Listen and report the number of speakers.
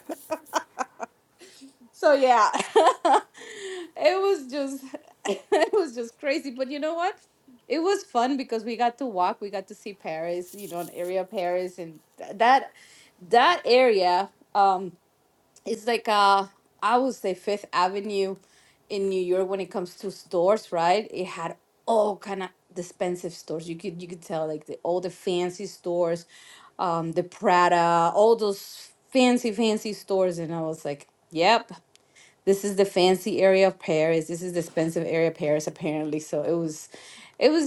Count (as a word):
one